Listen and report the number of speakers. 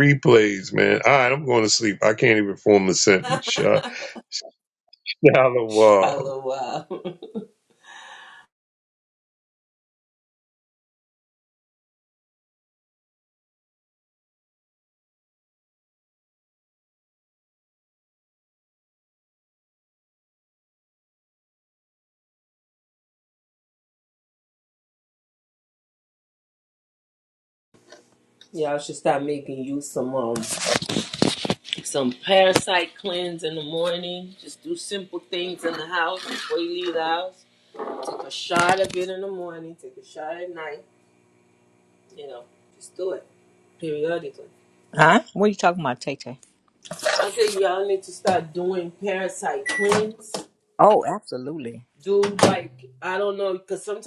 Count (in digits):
3